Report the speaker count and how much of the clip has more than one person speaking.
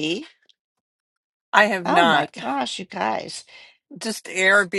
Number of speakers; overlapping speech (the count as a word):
two, about 9%